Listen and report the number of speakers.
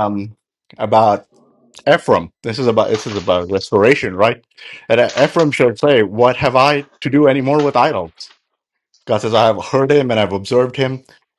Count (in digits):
1